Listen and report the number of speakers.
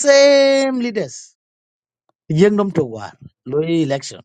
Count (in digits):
1